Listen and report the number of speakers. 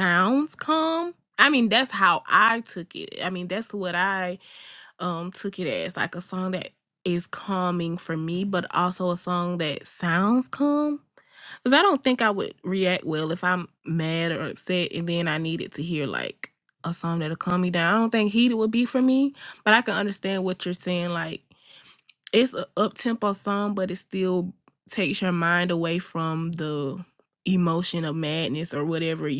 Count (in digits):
1